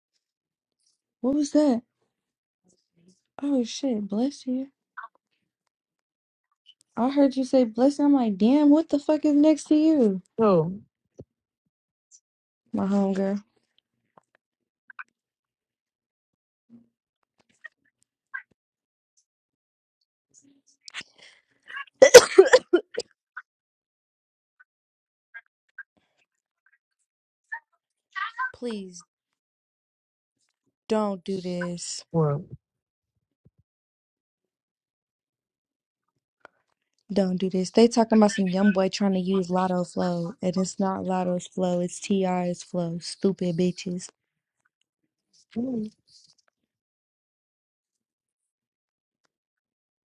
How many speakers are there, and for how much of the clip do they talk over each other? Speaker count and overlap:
2, no overlap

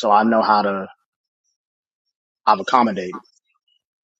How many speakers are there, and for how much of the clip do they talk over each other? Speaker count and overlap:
1, no overlap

